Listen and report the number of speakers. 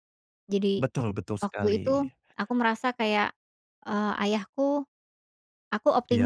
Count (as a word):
two